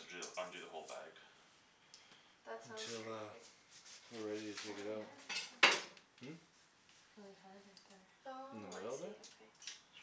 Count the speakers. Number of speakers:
four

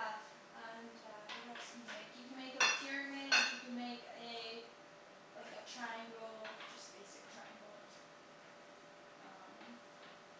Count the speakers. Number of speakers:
one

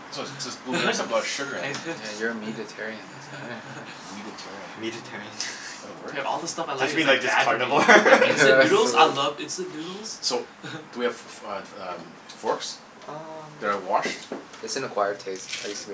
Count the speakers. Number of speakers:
four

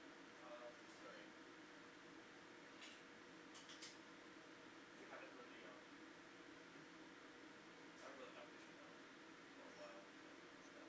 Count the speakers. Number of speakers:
one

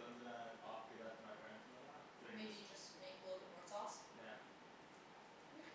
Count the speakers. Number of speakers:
two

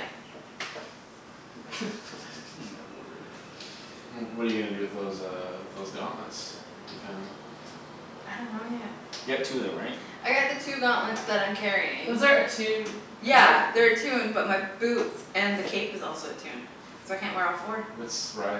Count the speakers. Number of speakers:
four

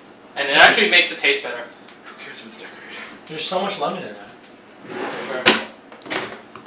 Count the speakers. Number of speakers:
three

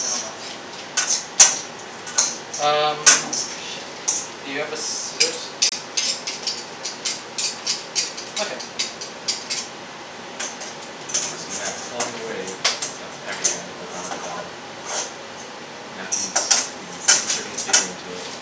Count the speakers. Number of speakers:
two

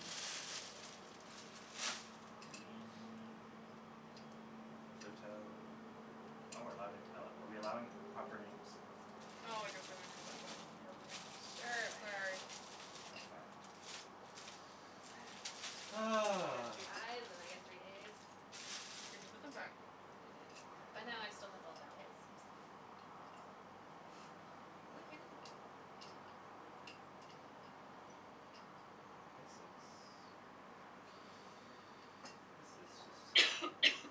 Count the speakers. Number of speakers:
three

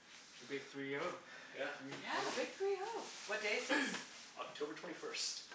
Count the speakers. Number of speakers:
three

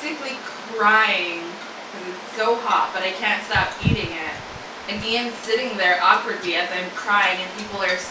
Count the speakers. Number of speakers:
one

